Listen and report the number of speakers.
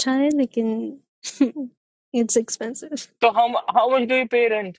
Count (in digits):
2